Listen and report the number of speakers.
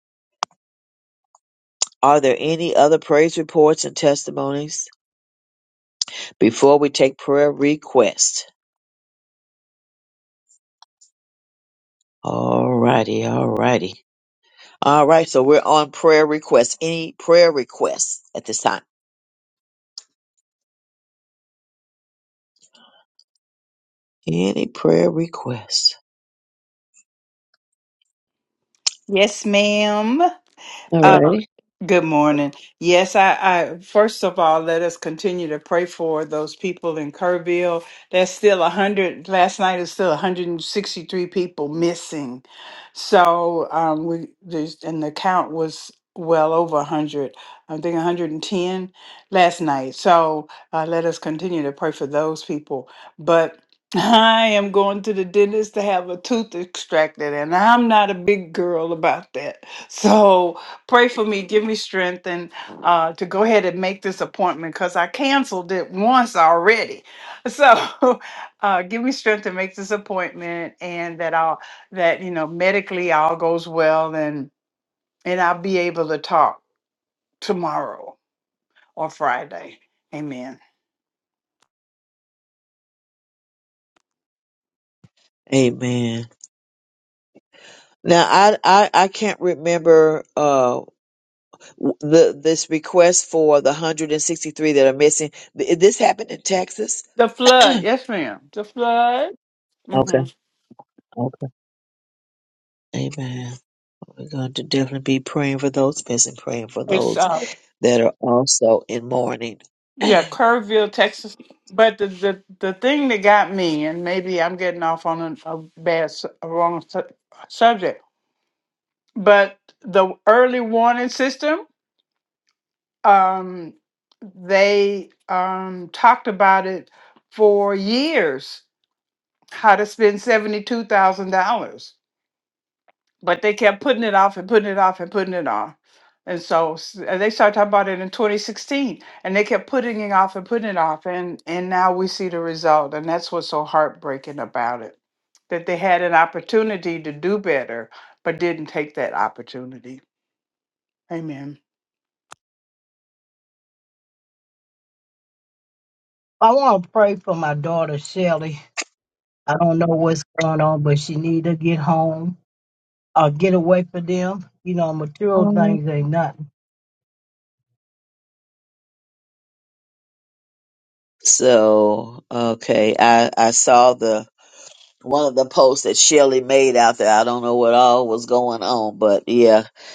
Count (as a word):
three